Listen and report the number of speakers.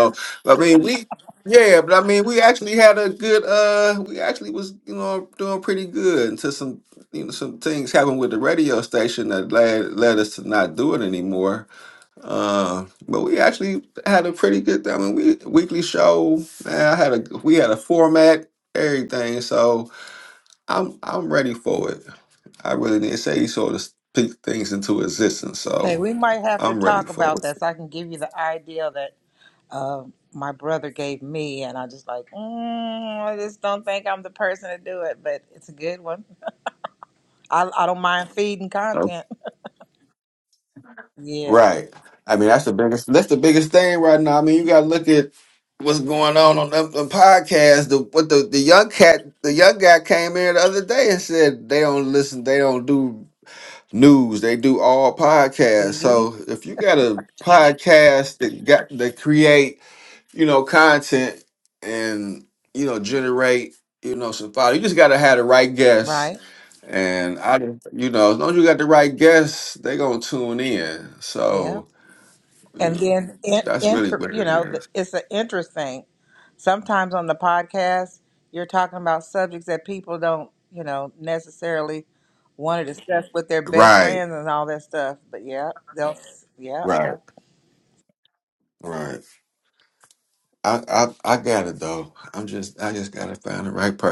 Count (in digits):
2